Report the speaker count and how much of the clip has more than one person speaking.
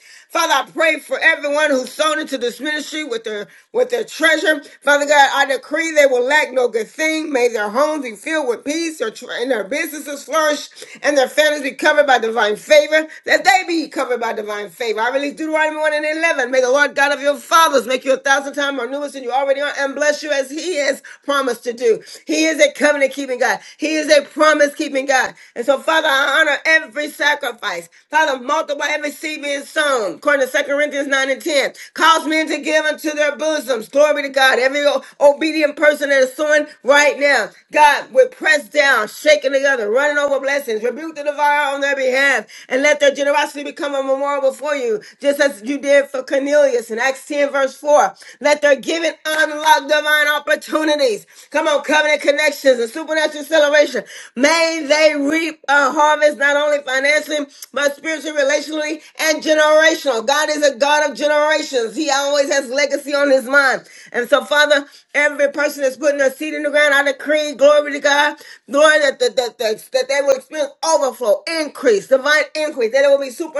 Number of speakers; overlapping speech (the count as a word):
one, no overlap